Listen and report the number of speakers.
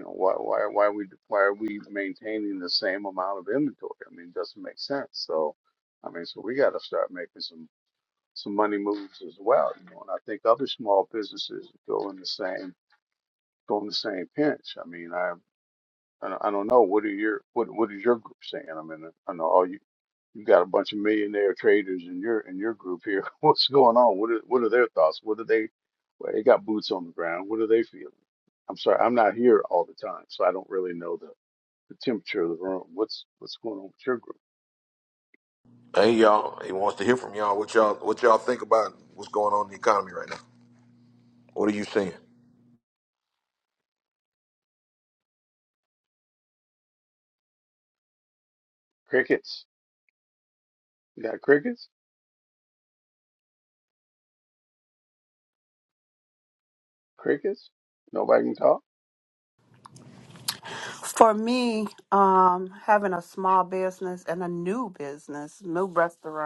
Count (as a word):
three